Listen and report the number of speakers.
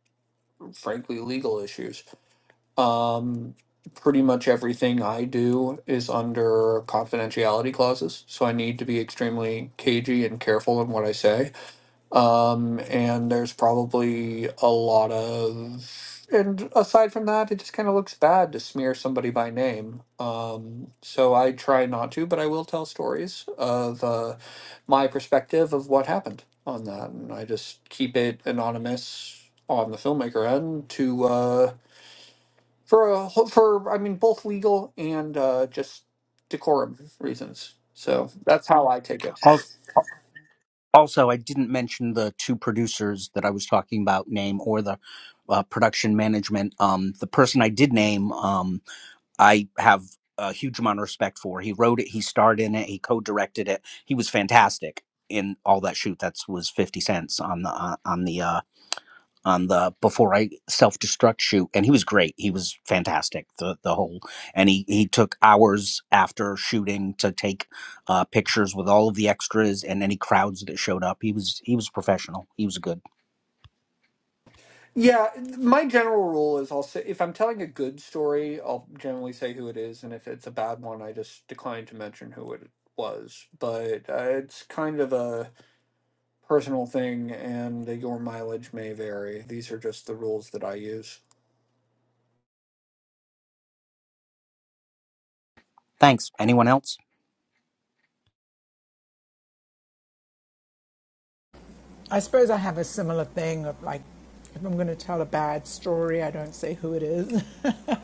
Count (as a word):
three